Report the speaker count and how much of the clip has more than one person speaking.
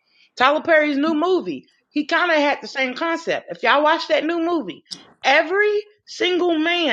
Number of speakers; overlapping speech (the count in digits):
1, no overlap